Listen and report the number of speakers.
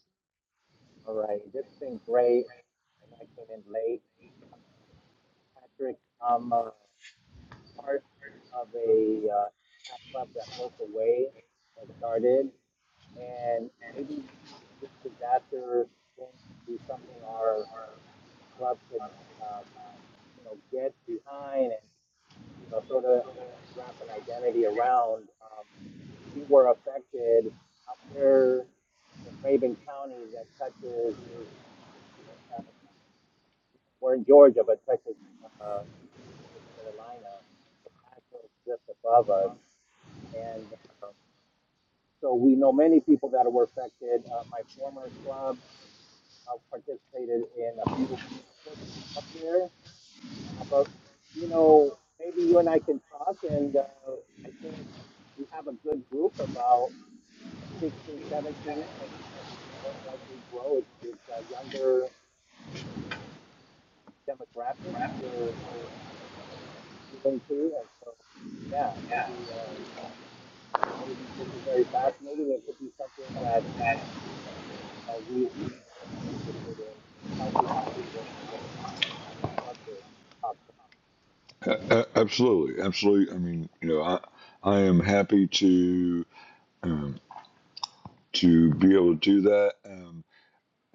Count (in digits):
2